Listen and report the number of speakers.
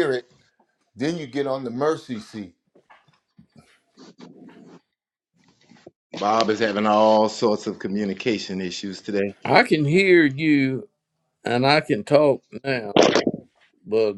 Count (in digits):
3